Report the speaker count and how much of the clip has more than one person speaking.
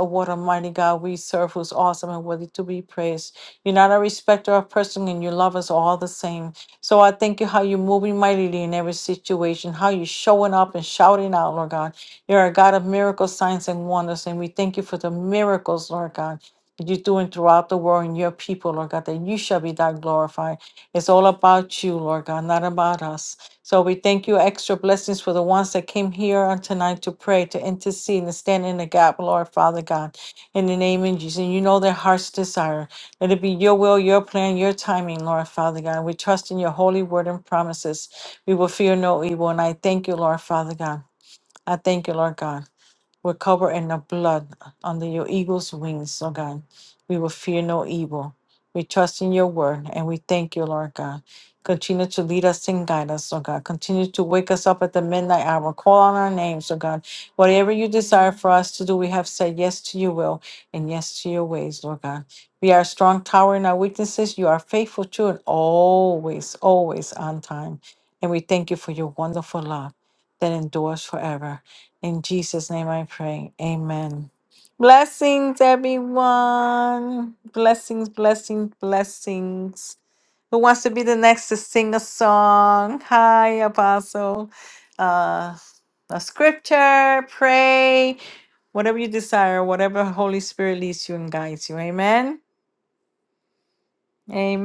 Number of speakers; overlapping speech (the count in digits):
1, no overlap